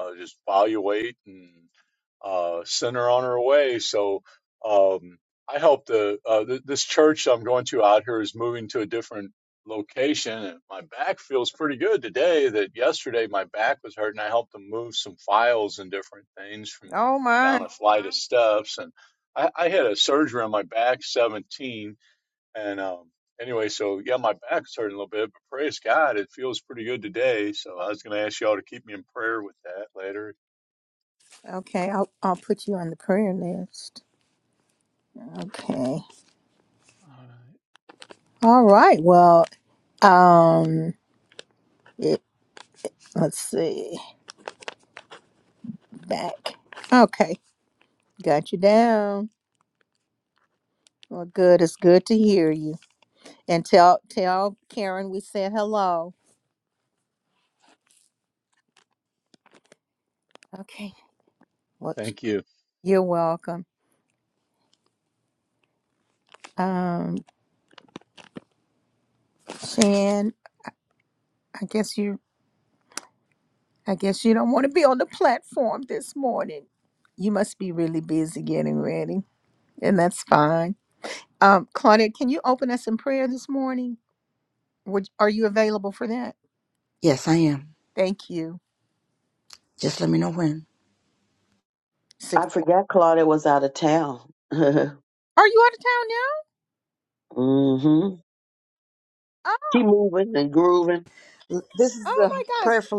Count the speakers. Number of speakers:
four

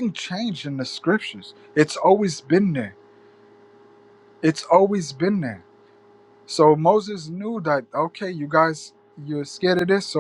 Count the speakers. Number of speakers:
one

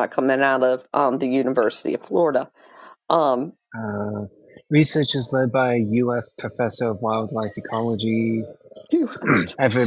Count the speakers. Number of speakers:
two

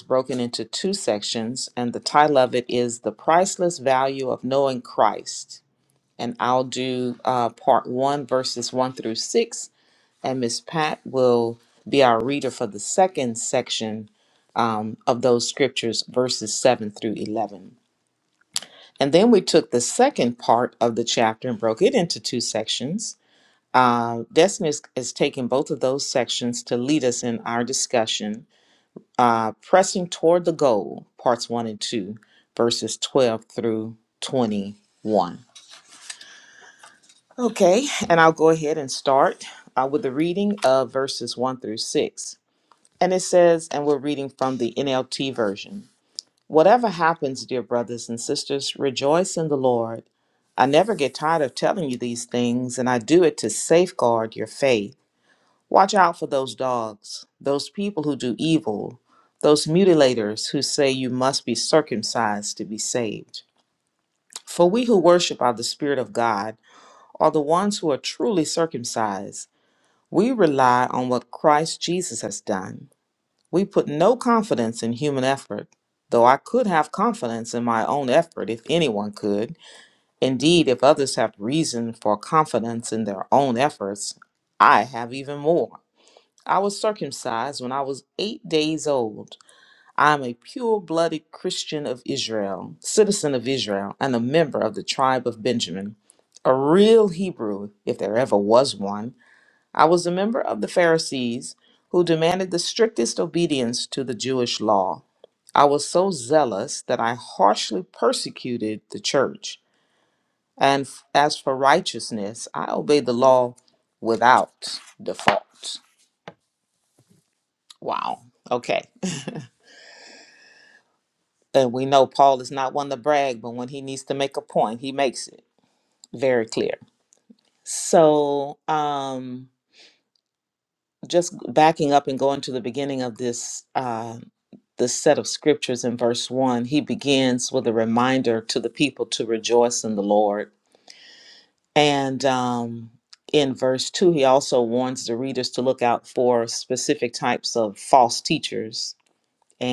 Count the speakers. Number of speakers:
one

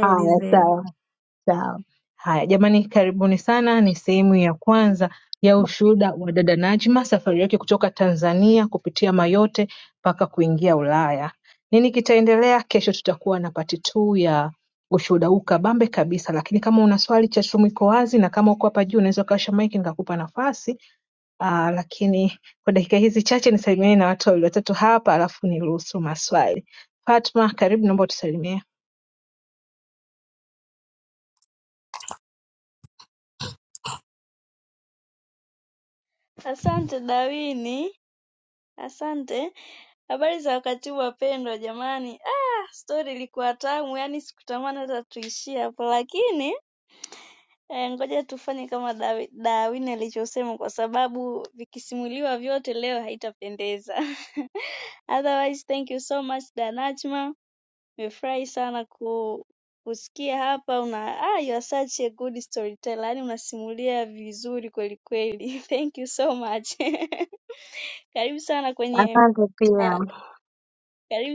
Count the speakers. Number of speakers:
three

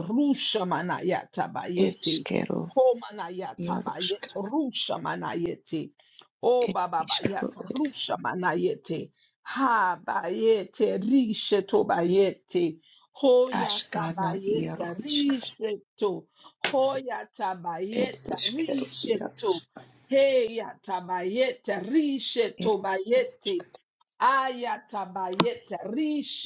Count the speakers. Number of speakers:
two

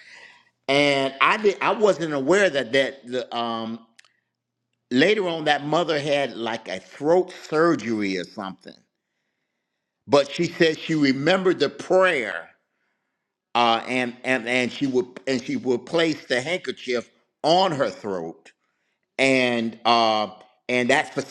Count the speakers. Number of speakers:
one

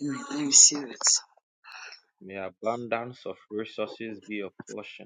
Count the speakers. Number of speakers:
two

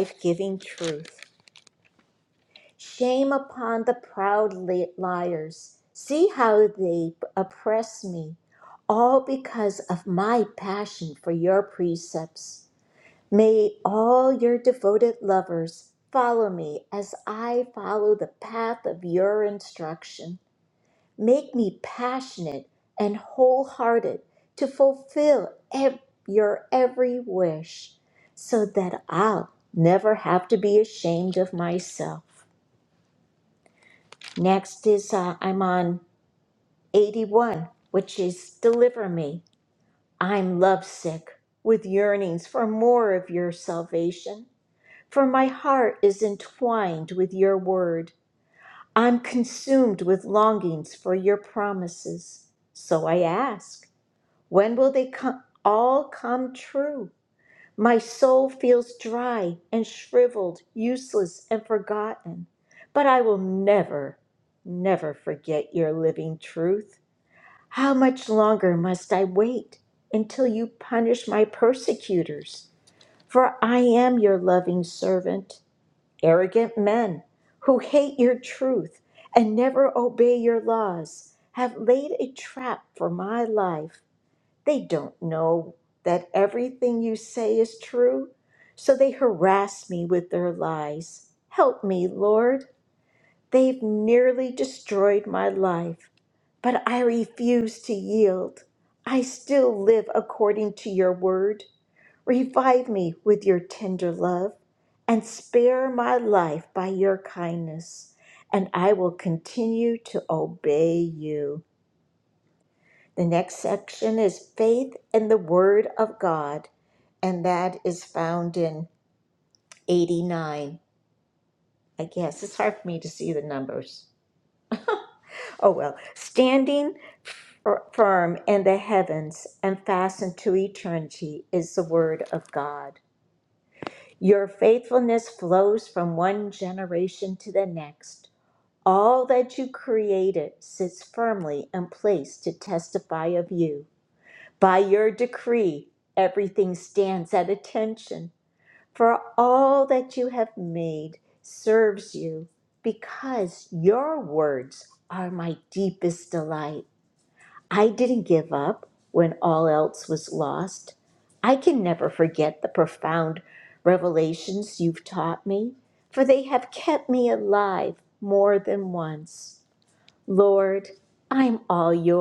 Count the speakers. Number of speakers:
one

